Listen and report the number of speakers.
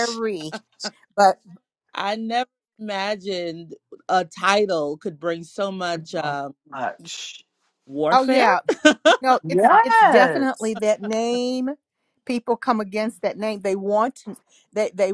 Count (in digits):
3